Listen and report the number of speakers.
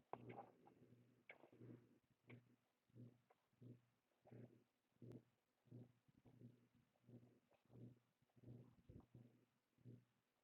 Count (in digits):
0